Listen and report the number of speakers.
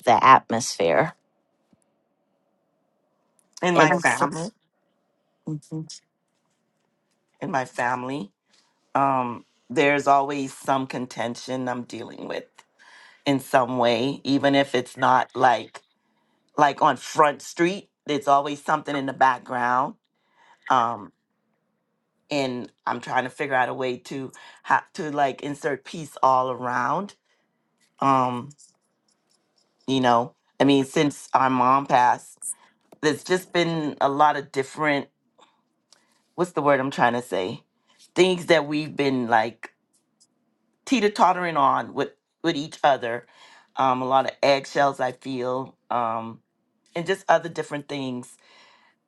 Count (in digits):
2